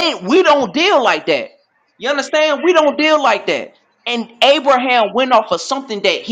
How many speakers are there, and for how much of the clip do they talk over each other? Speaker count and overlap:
one, no overlap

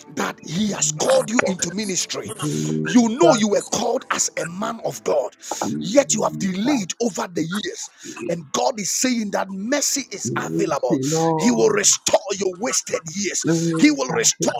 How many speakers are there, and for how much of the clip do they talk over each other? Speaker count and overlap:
two, about 26%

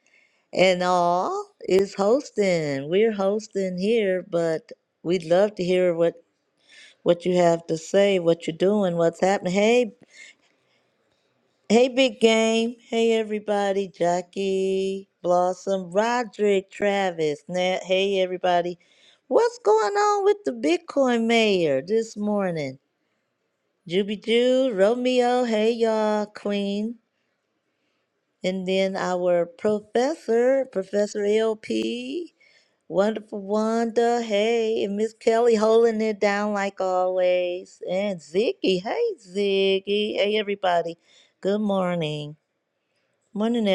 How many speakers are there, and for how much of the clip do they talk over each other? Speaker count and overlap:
one, no overlap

